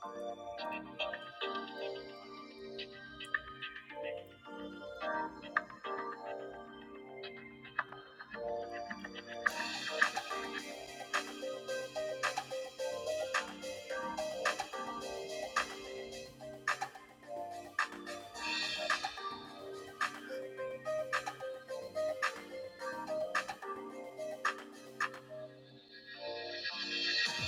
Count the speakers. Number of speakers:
0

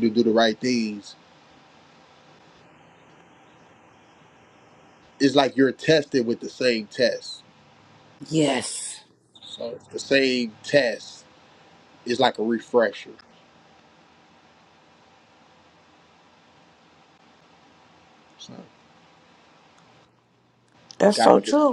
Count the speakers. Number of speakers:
2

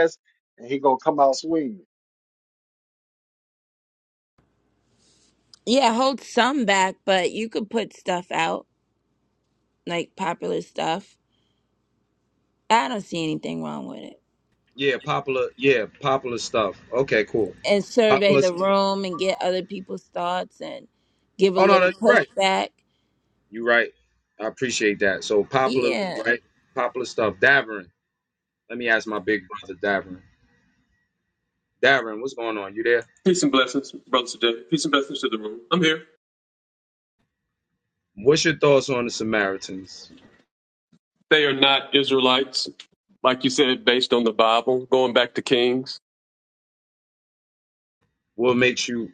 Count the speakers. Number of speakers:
4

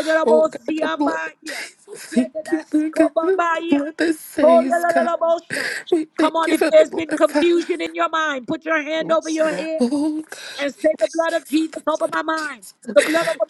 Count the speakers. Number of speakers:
2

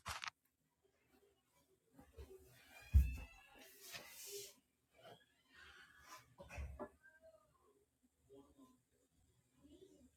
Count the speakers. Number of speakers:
0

